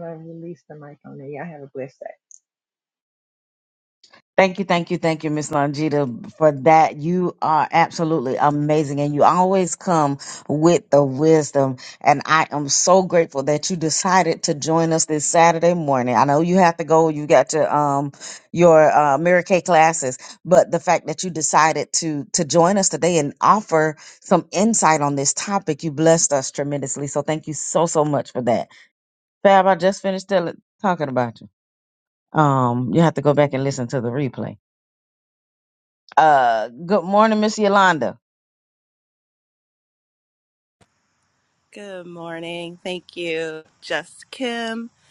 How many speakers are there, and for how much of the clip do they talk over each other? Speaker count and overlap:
three, no overlap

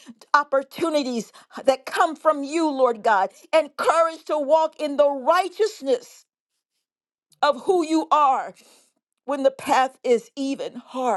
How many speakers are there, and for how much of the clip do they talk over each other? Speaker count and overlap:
one, no overlap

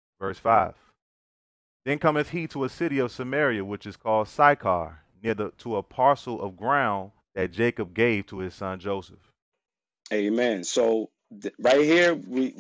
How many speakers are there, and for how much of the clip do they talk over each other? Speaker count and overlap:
two, no overlap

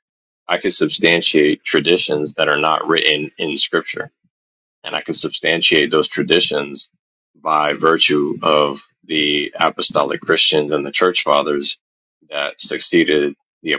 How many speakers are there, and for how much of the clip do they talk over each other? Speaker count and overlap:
one, no overlap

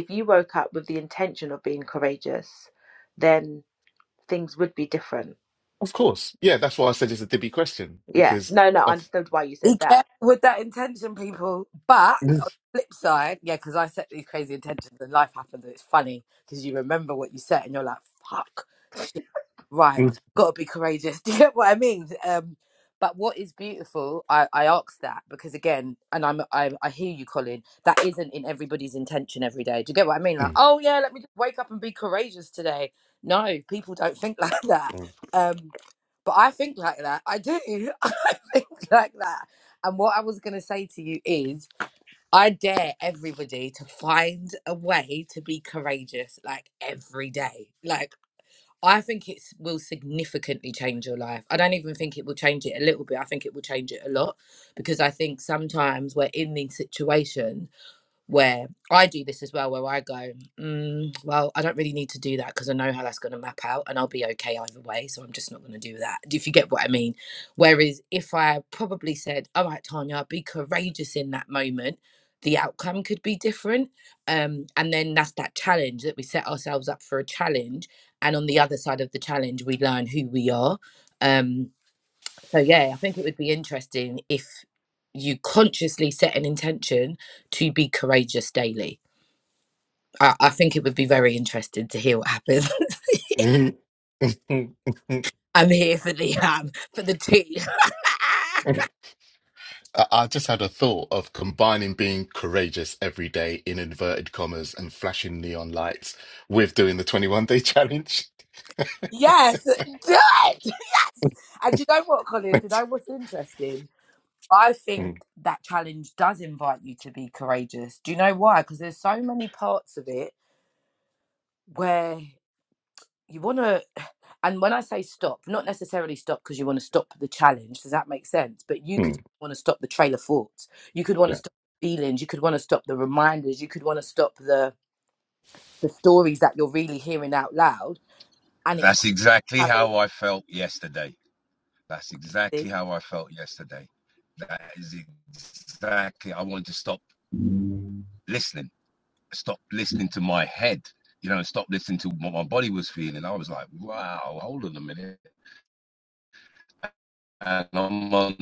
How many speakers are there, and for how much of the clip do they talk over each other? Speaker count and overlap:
four, about 1%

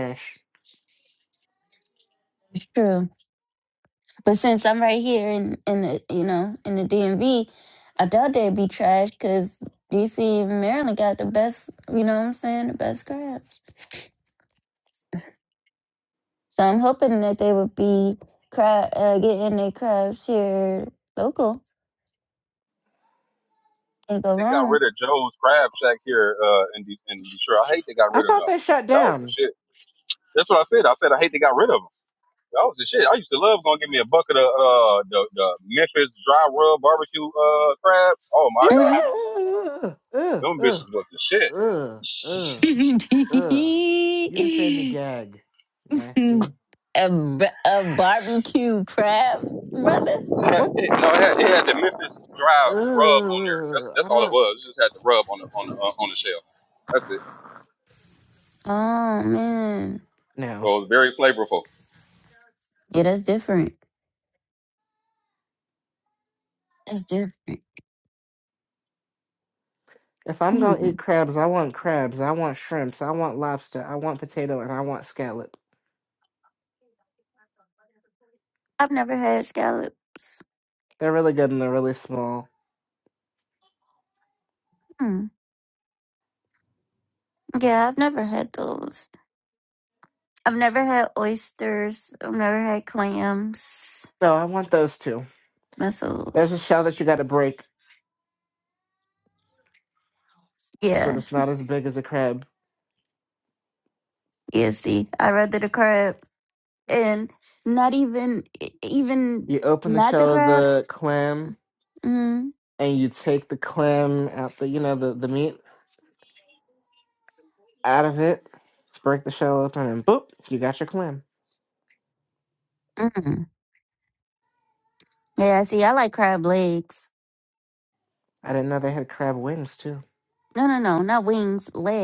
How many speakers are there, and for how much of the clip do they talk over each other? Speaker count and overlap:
three, about 4%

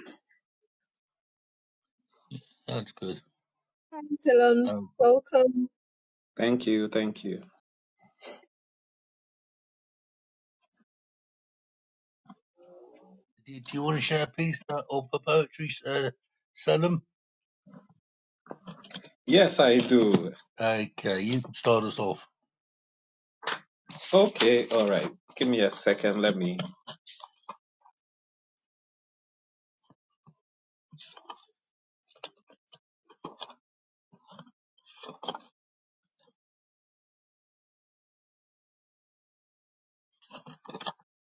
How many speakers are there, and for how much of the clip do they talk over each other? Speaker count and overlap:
three, about 1%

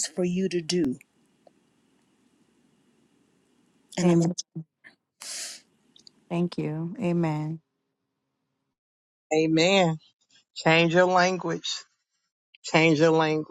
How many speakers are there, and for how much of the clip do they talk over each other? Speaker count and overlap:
three, about 2%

